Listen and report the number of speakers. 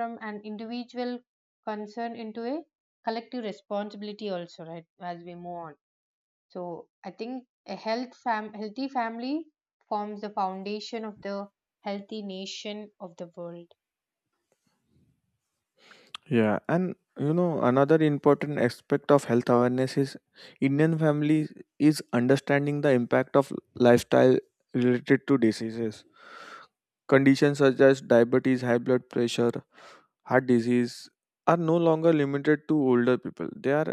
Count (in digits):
2